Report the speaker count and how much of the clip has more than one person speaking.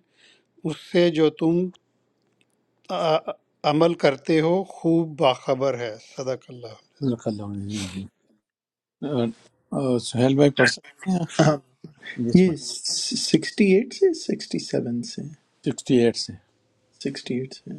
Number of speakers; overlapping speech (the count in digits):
3, about 1%